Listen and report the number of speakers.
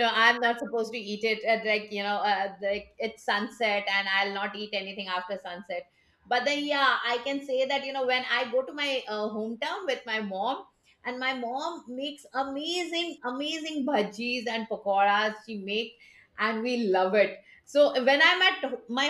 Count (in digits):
1